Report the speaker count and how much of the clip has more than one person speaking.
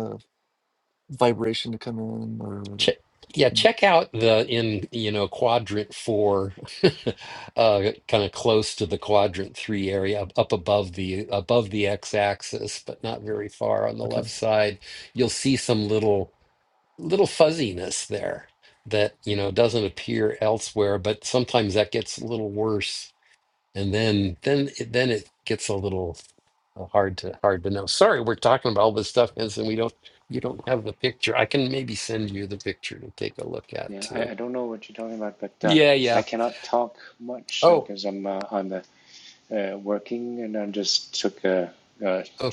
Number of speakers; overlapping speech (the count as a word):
three, about 4%